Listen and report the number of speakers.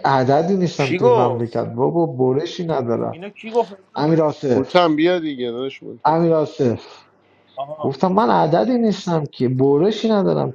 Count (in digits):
3